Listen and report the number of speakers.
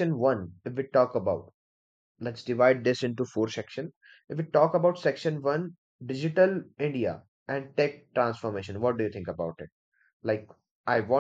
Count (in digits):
1